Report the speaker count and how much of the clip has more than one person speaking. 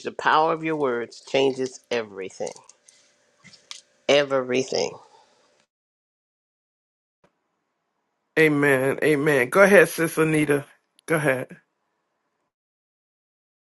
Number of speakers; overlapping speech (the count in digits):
2, no overlap